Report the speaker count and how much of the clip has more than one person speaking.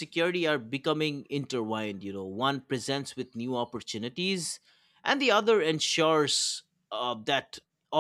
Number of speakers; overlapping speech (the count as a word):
one, no overlap